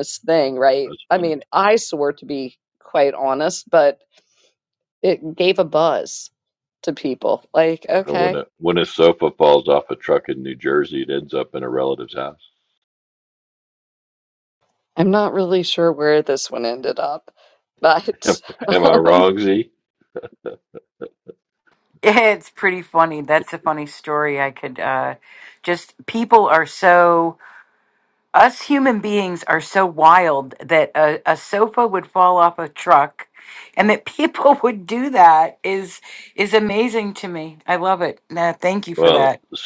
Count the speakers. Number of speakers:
3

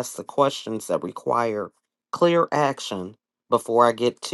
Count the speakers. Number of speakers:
1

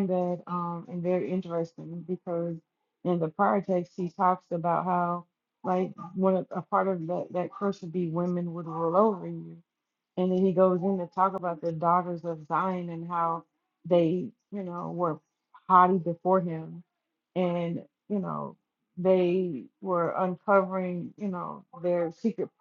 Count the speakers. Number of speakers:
1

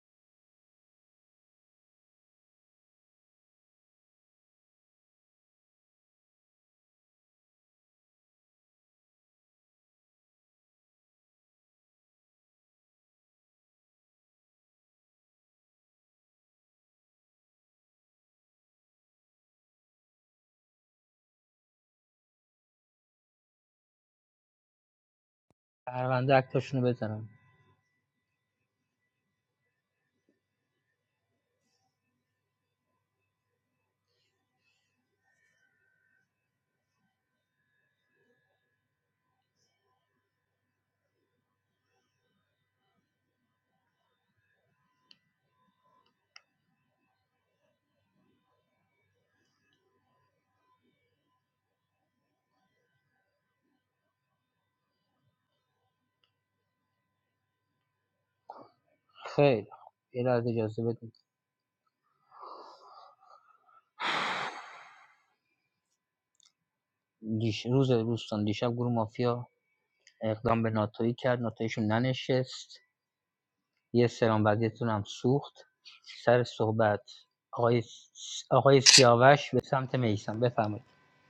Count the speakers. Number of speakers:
1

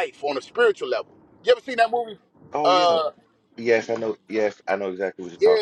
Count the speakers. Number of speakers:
2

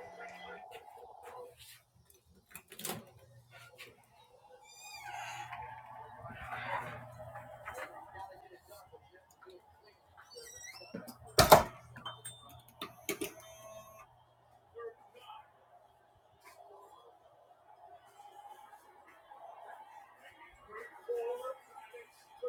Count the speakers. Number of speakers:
0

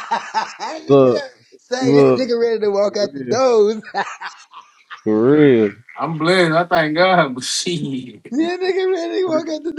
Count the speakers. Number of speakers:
3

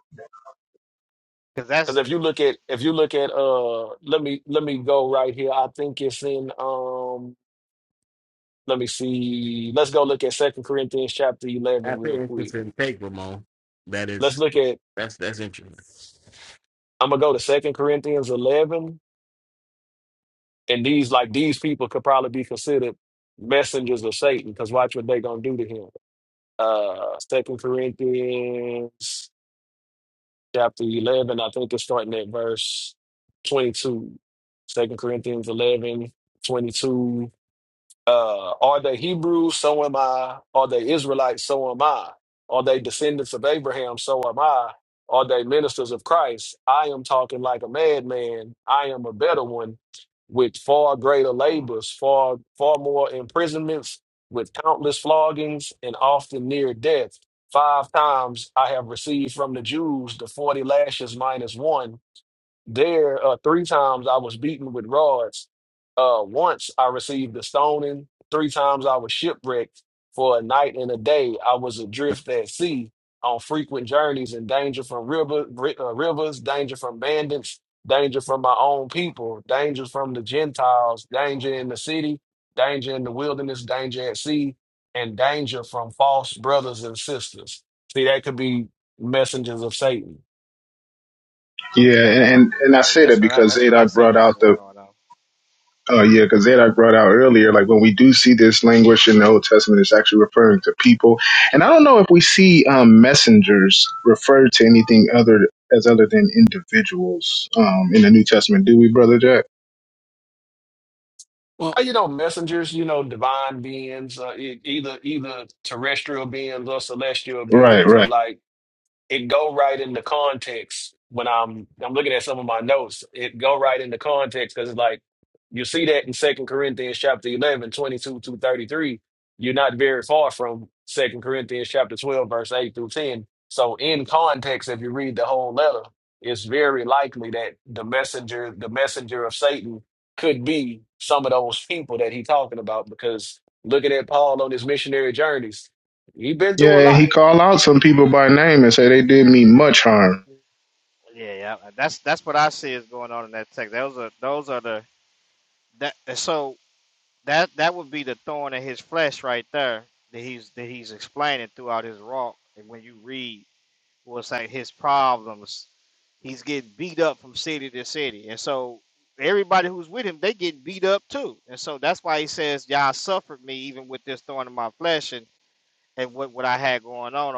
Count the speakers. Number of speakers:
4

